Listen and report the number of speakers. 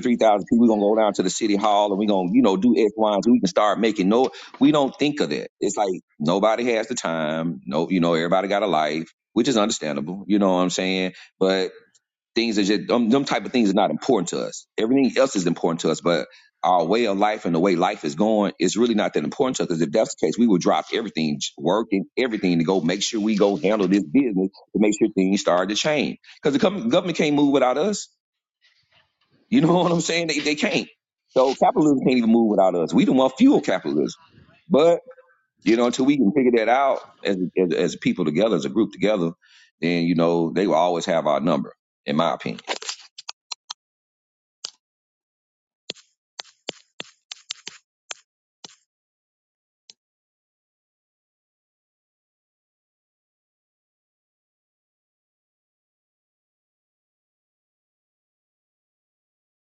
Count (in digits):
1